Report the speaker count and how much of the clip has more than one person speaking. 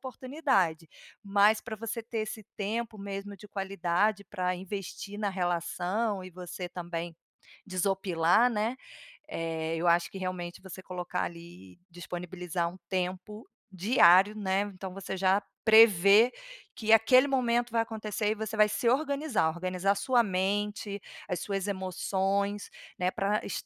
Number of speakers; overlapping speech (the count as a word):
one, no overlap